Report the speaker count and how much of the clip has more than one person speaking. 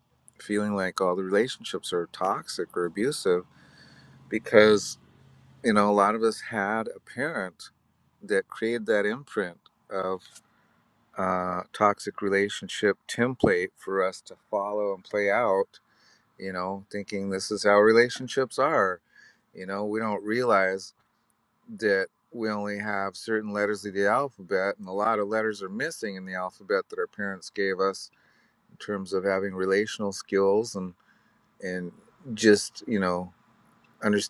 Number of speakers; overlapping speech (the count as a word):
one, no overlap